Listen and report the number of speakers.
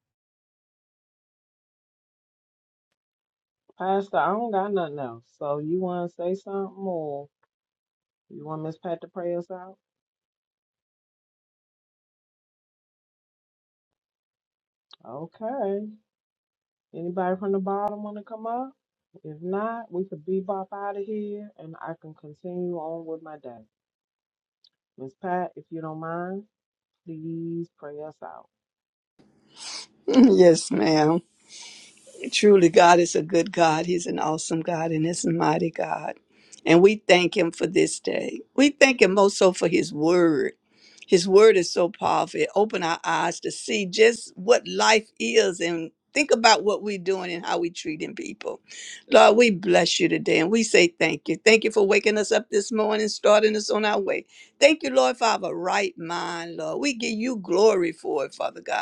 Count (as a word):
two